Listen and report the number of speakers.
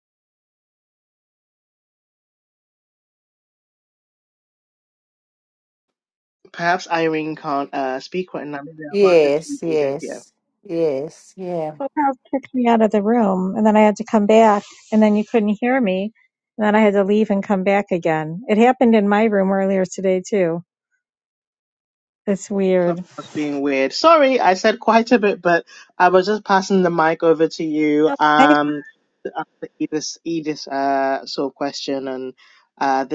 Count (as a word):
three